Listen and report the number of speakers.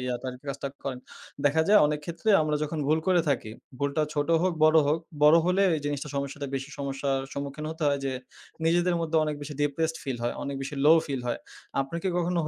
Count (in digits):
1